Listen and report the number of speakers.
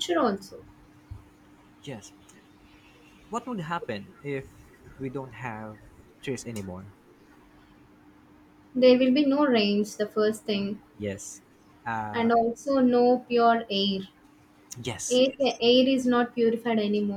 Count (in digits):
2